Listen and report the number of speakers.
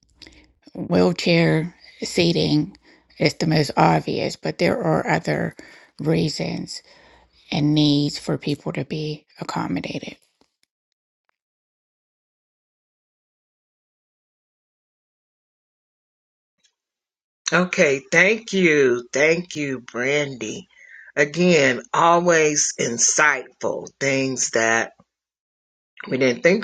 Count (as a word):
two